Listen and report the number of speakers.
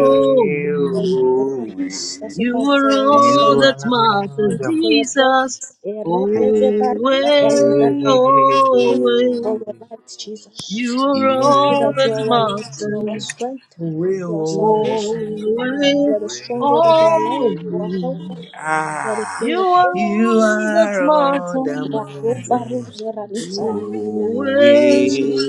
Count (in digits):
3